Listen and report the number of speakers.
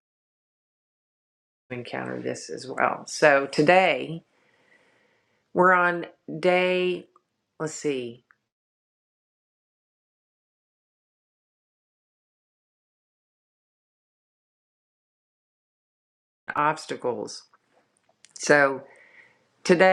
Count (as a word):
one